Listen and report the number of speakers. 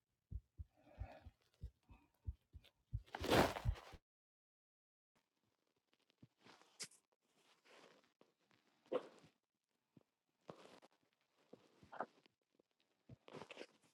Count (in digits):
0